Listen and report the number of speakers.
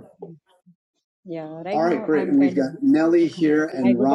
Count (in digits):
2